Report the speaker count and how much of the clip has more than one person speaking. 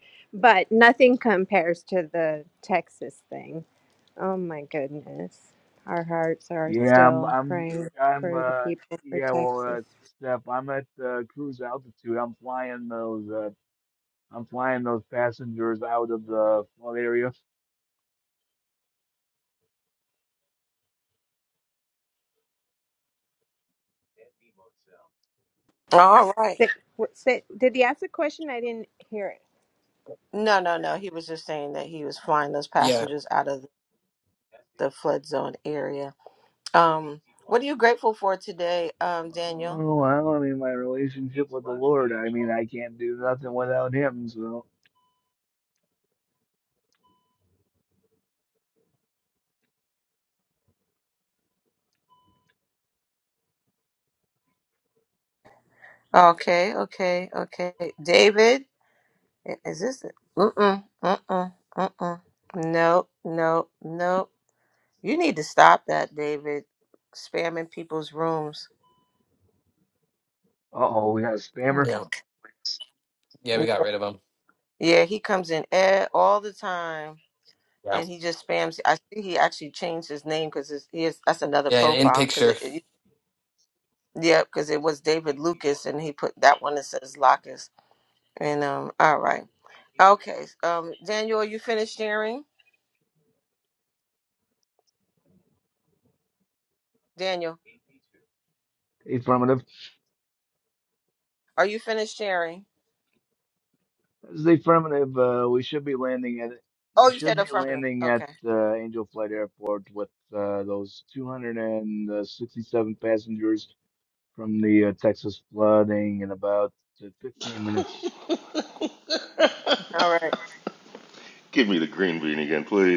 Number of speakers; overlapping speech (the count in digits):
5, about 4%